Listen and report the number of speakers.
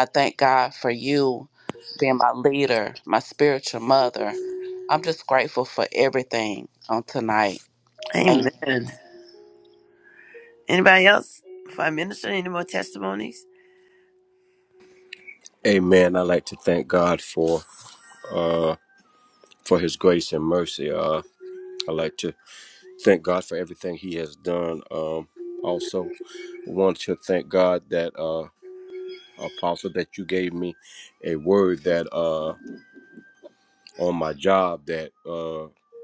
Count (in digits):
3